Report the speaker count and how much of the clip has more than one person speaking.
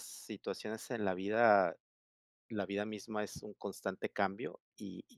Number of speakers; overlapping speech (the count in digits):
1, no overlap